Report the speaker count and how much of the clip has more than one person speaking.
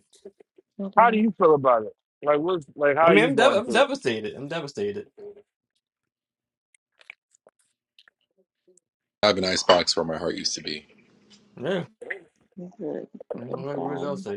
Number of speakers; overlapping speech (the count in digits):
4, about 14%